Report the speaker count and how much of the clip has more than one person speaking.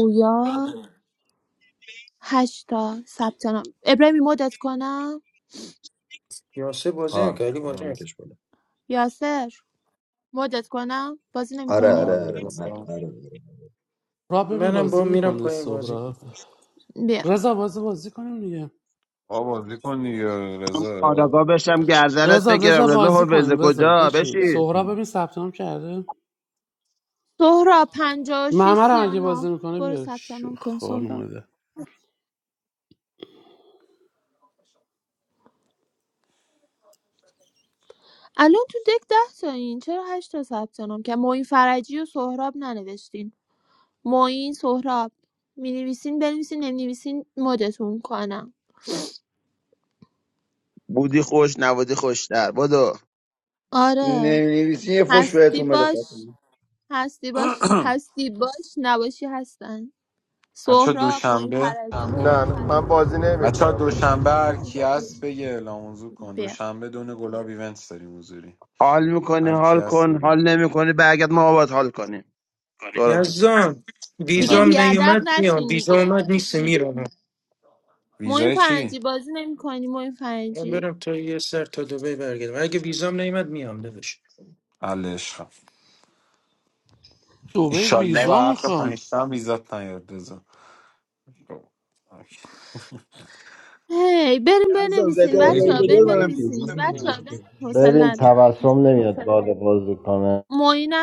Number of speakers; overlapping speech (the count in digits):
9, about 19%